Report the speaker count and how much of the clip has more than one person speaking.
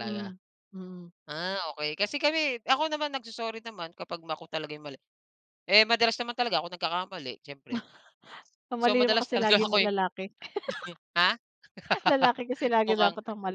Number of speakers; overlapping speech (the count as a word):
two, about 12%